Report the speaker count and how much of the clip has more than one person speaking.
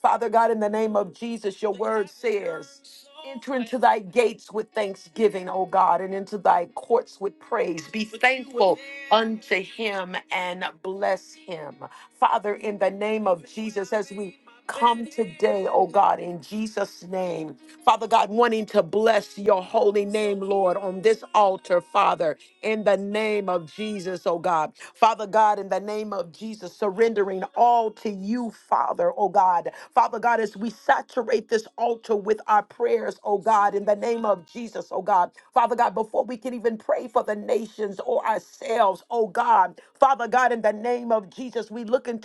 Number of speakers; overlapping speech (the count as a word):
one, no overlap